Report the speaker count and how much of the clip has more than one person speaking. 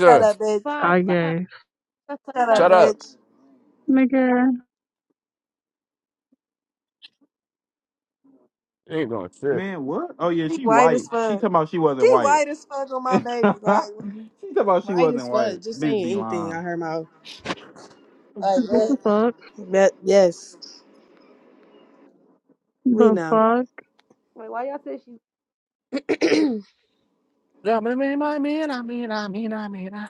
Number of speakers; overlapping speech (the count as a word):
five, about 20%